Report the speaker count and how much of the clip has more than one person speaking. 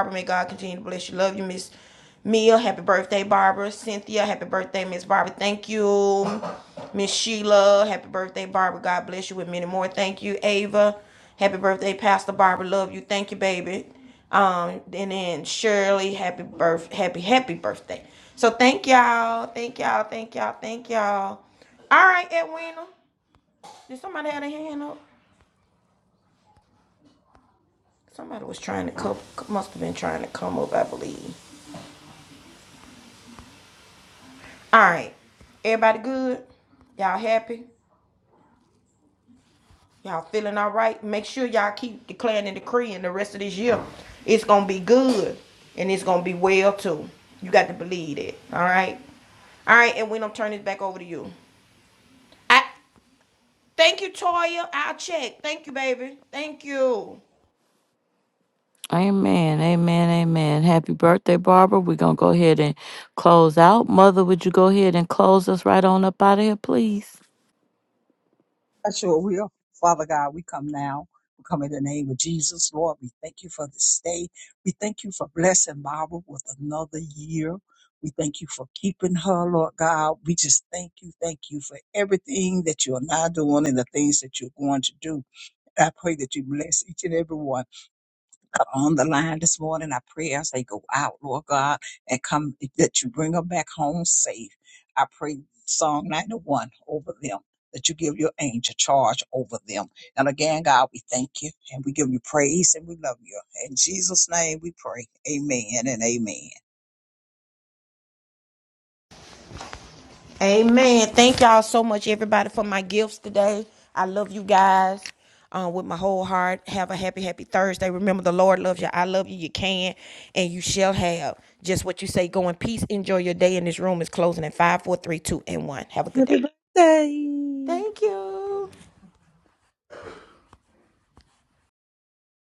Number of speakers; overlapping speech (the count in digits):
4, under 1%